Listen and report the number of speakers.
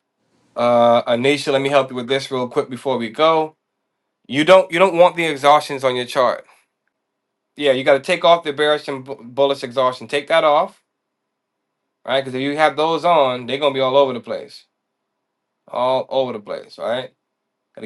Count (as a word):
one